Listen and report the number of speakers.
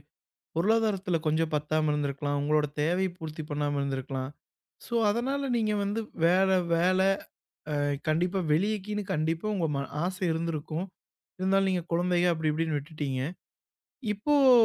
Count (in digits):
1